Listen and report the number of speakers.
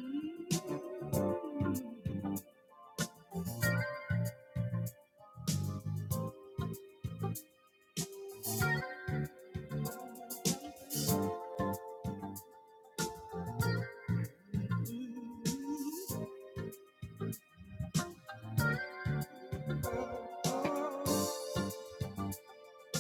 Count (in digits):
0